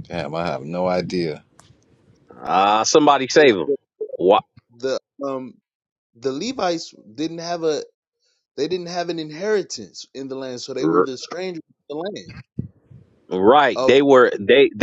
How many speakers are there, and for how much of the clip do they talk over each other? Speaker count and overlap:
three, about 4%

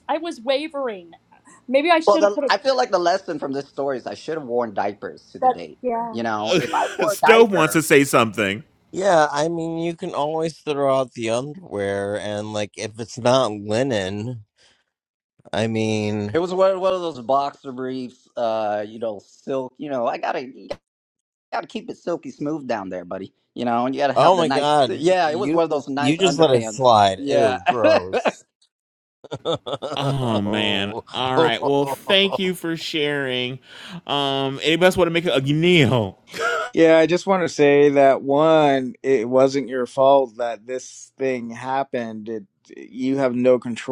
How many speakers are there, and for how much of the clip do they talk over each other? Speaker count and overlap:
five, about 12%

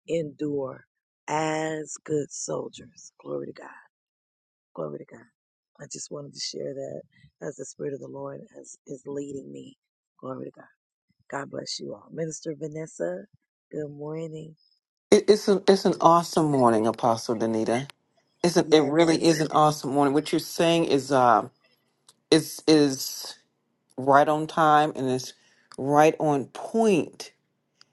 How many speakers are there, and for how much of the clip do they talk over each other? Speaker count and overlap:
two, about 3%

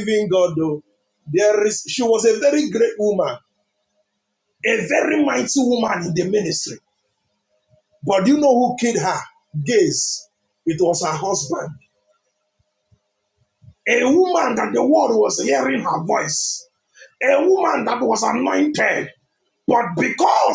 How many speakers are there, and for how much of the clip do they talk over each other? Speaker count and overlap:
one, no overlap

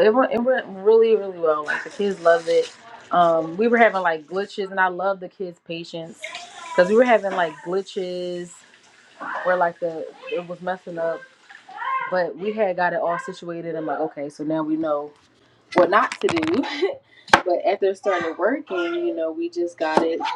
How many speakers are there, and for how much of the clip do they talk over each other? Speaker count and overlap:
one, no overlap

